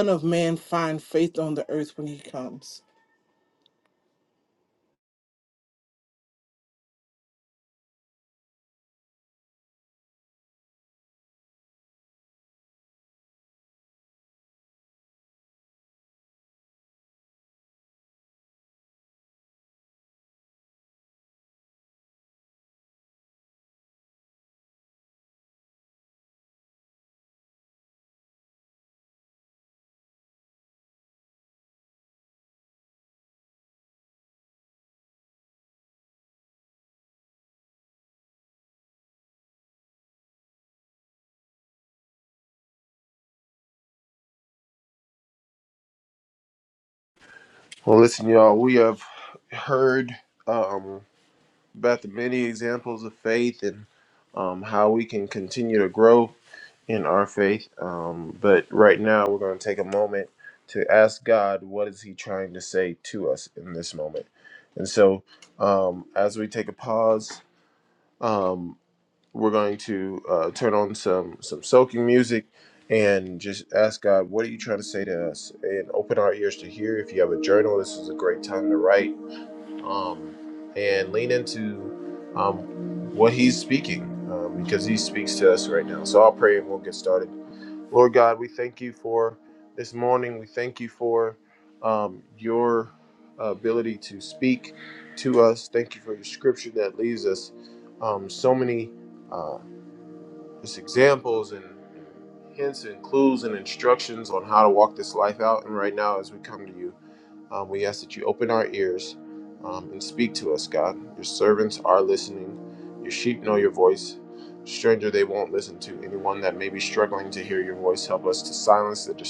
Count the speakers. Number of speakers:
2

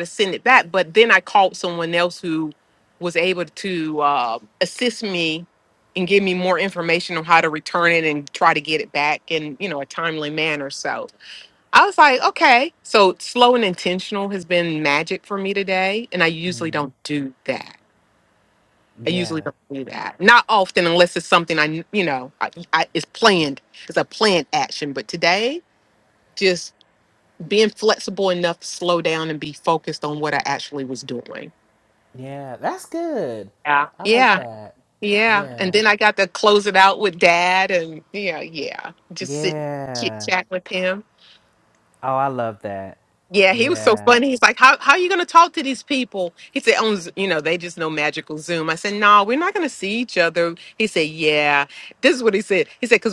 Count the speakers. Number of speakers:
2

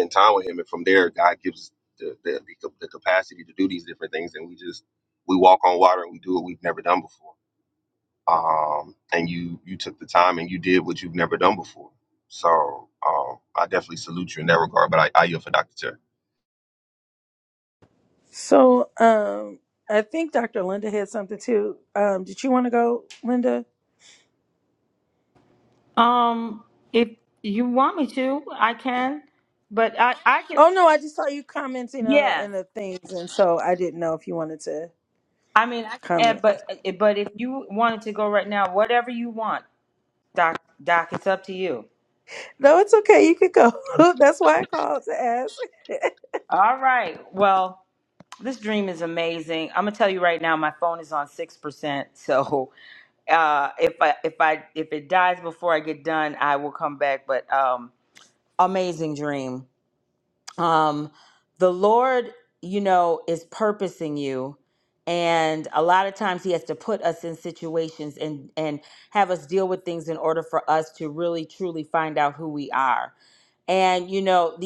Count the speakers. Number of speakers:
3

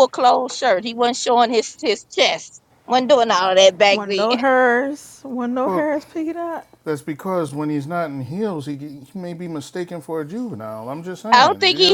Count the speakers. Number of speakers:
3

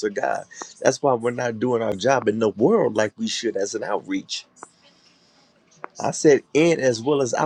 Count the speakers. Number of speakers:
1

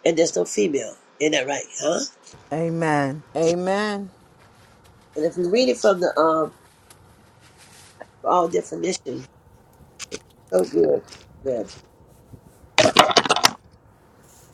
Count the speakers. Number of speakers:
2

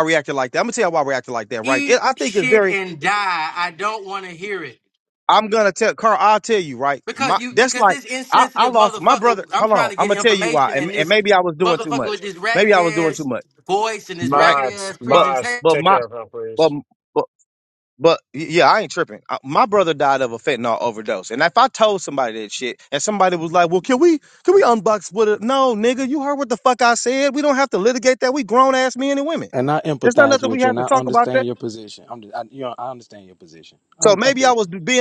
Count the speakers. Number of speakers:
4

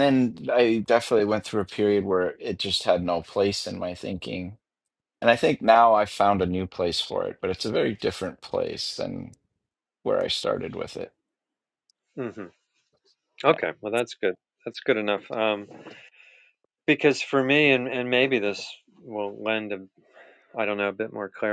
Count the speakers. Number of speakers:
2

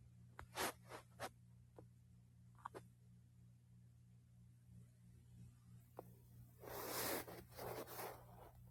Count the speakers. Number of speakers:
0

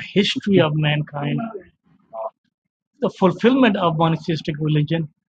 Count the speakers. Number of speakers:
1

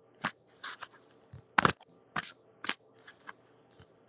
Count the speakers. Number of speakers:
0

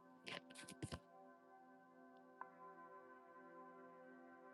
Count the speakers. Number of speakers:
0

